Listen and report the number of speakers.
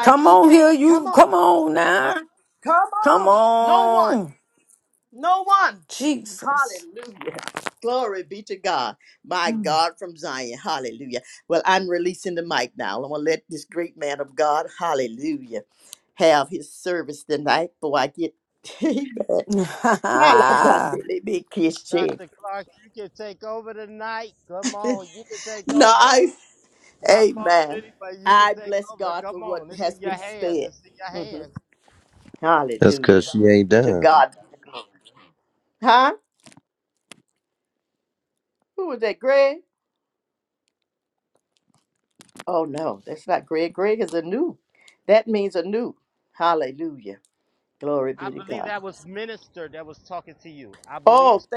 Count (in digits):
4